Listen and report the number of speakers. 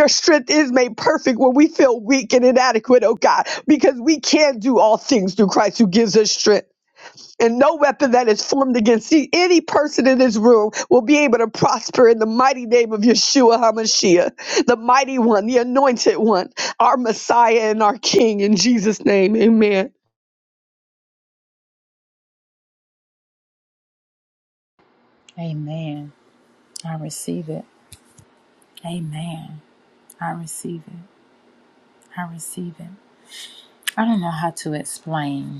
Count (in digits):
2